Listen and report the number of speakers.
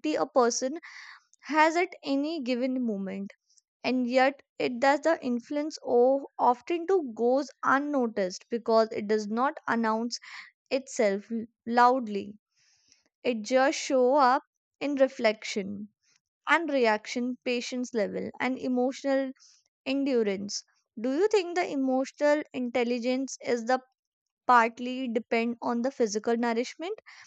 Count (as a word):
one